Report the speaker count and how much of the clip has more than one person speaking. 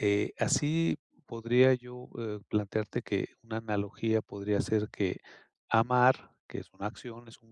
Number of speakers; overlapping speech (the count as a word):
one, no overlap